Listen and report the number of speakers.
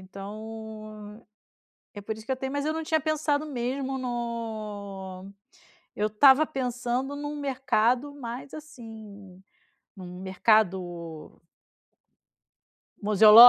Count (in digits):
1